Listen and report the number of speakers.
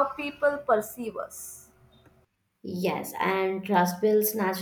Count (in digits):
2